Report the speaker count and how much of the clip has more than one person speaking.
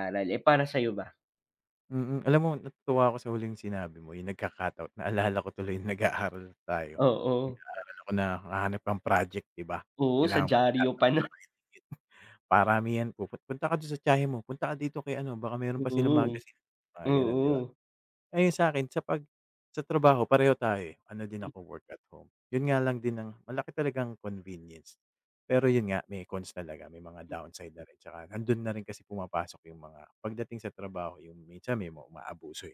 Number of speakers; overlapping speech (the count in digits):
2, about 5%